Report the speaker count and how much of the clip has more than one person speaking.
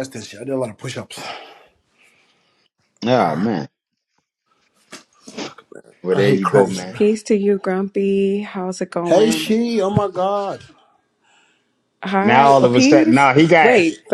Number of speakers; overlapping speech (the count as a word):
three, about 21%